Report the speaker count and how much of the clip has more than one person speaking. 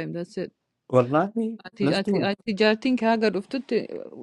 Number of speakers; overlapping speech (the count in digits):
2, about 16%